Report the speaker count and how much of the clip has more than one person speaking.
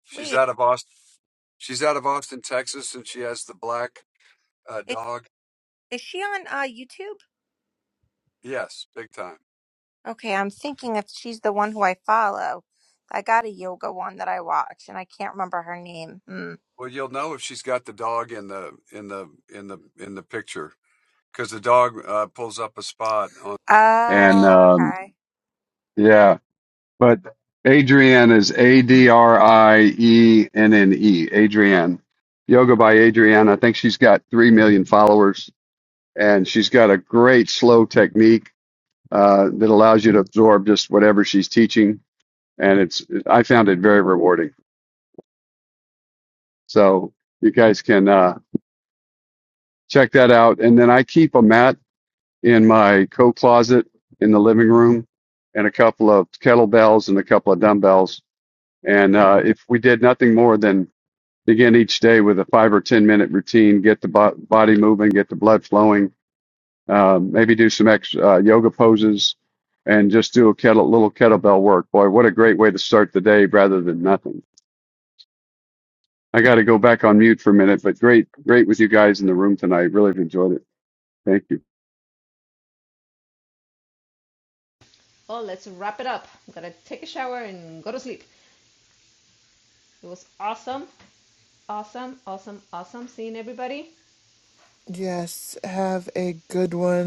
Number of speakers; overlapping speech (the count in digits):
4, about 1%